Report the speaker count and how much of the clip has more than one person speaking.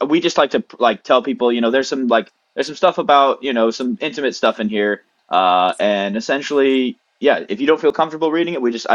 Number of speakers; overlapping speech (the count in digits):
1, no overlap